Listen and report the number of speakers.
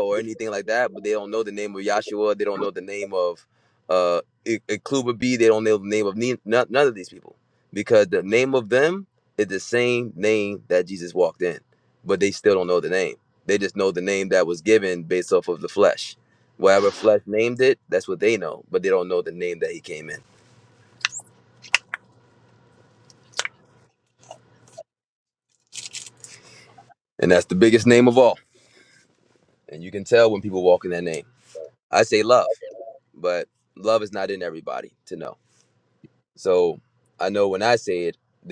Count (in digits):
1